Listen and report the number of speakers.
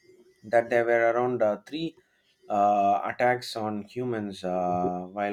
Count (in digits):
1